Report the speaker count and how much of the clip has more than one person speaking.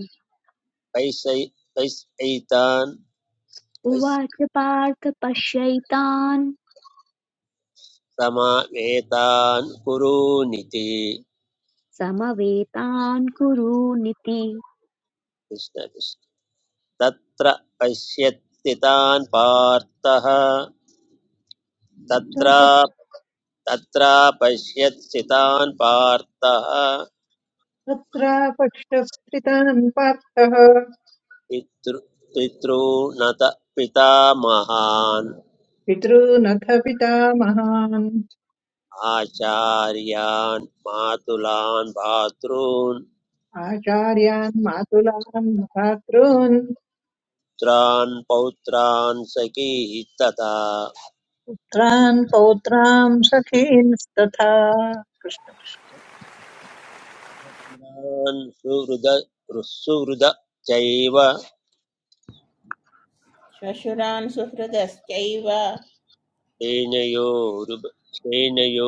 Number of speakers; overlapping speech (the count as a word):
four, under 1%